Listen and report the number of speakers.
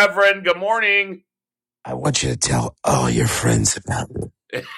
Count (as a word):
two